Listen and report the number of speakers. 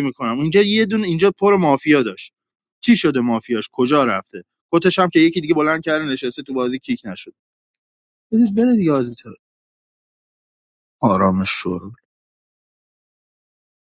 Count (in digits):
1